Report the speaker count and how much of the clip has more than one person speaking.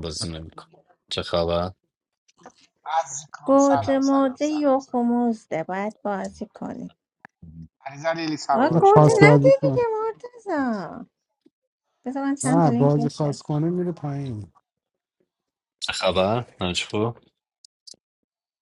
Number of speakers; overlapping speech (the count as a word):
four, about 19%